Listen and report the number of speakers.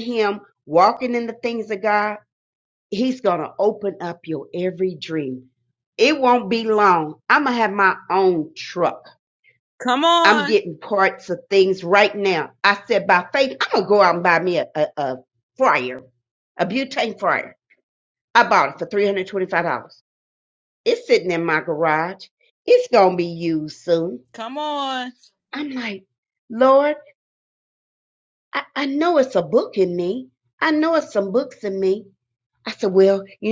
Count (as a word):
two